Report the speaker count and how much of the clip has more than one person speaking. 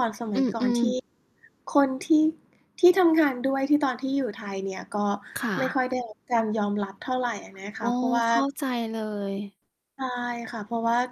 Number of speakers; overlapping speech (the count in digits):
2, about 9%